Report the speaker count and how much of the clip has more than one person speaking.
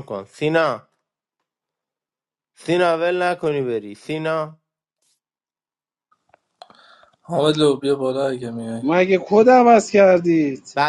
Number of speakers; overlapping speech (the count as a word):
three, no overlap